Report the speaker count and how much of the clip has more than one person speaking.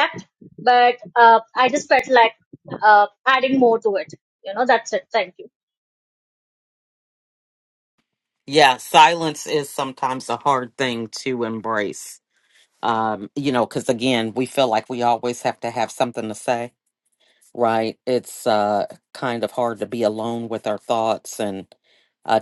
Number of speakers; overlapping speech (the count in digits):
2, no overlap